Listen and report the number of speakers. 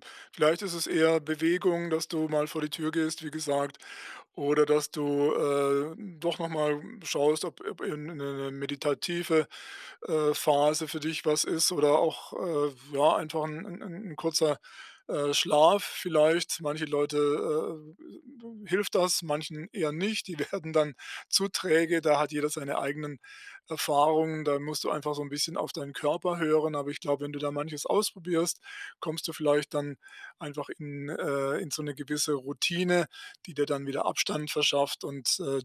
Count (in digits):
1